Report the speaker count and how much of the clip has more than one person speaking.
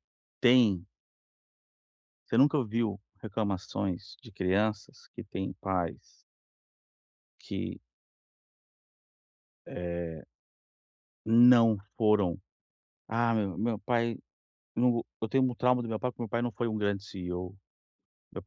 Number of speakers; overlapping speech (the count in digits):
1, no overlap